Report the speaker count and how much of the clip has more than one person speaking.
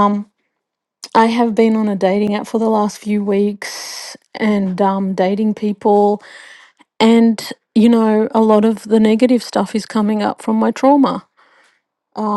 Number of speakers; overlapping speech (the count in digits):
1, no overlap